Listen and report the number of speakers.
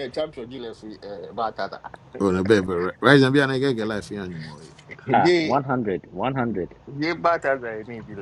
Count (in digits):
3